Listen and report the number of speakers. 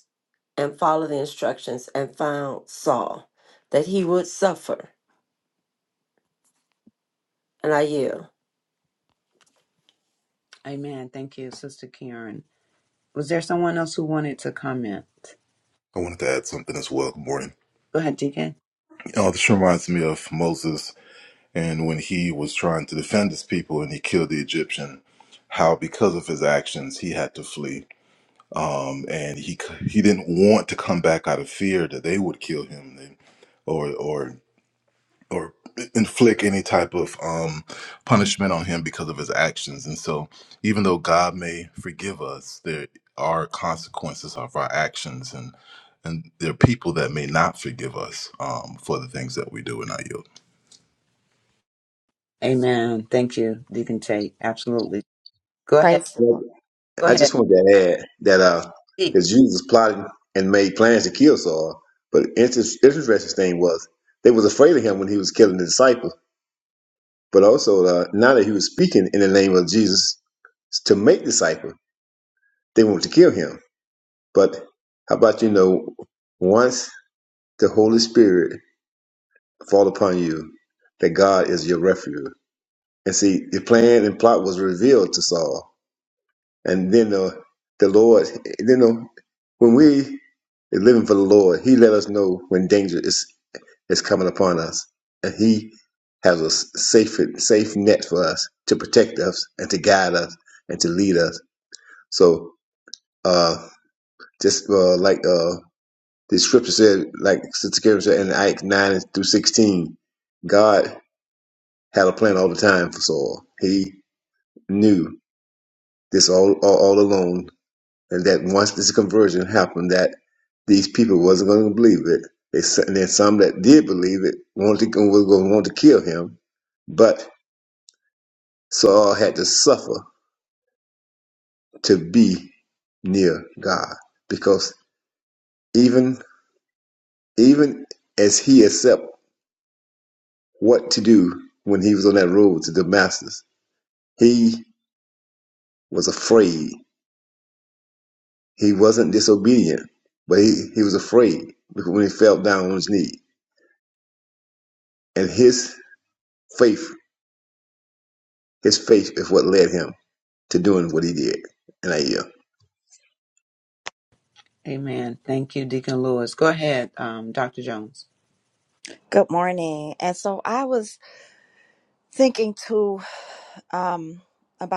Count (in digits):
5